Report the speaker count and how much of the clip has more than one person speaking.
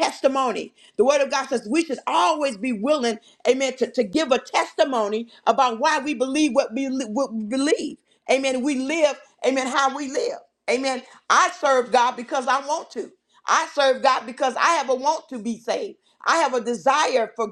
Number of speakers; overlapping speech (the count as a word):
one, no overlap